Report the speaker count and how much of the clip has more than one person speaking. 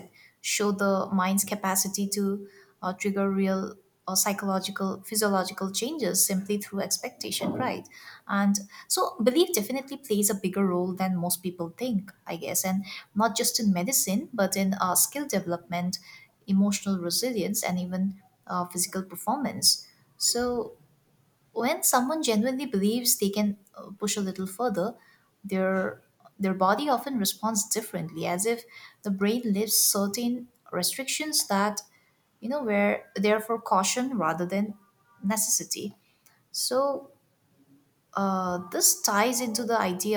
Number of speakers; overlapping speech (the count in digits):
1, no overlap